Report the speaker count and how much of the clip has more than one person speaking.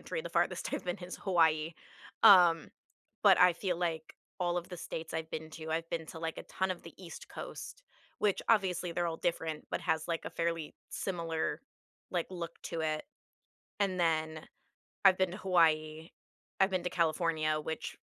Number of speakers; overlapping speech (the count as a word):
one, no overlap